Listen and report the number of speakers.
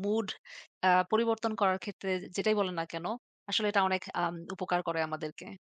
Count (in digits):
1